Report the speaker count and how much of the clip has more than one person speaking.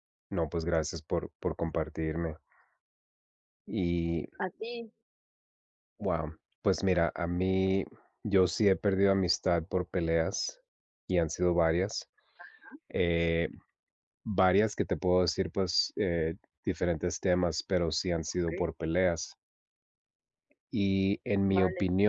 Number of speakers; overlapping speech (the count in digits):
2, about 3%